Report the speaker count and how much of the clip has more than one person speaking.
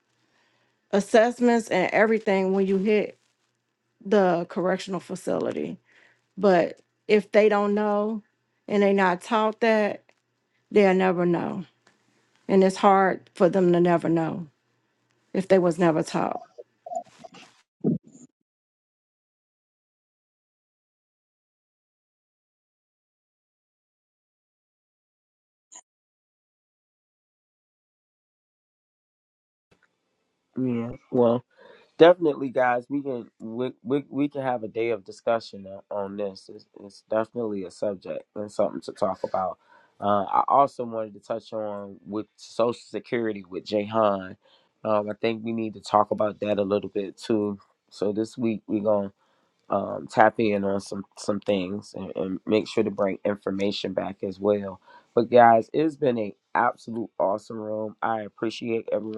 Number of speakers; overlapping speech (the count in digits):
2, no overlap